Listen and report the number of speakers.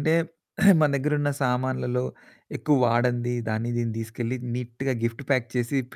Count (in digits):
1